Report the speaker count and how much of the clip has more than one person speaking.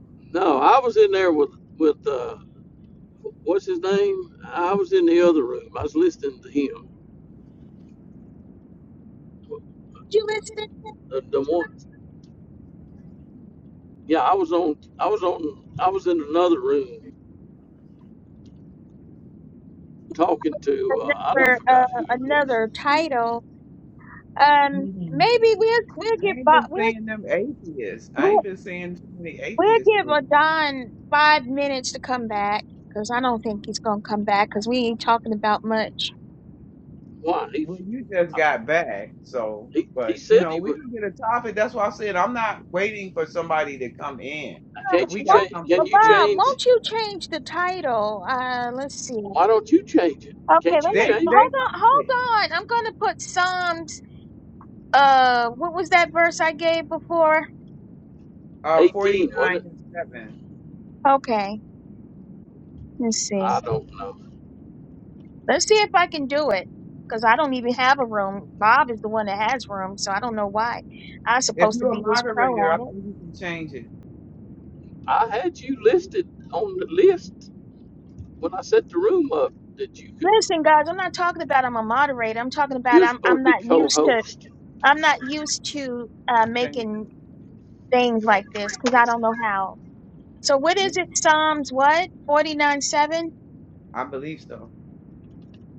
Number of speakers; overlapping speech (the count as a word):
three, about 12%